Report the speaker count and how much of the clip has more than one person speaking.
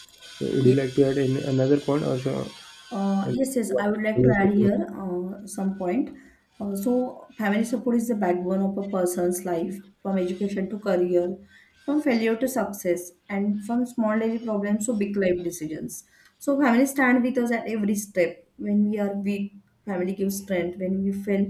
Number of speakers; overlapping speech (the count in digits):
2, about 1%